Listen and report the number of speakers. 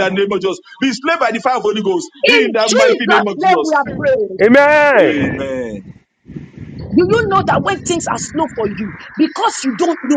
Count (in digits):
3